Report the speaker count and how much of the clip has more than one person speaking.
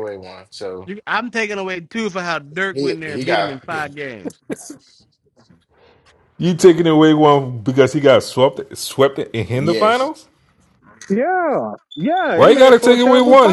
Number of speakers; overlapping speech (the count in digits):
4, about 20%